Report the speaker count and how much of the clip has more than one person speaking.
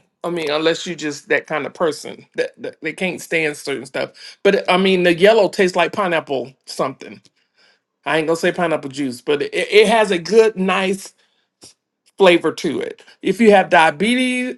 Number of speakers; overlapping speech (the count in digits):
1, no overlap